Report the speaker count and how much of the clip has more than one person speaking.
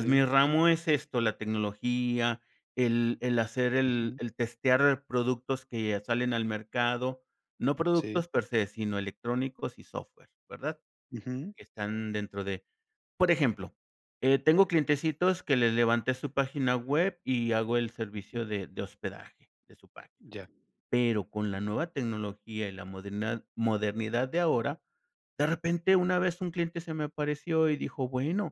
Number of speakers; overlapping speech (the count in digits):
2, about 3%